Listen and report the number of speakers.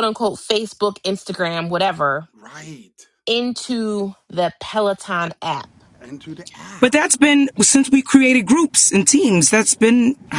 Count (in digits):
3